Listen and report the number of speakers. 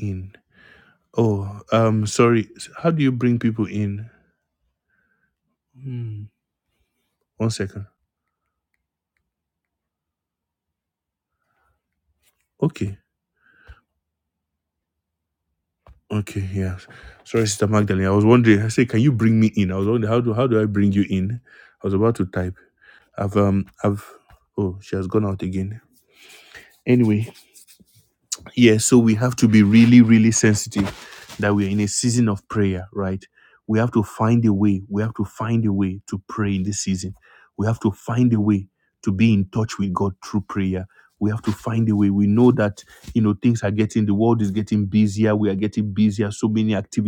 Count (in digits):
1